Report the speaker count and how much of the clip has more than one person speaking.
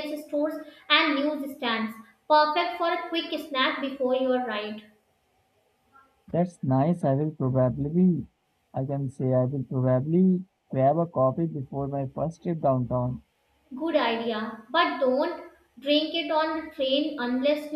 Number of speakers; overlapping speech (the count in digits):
2, no overlap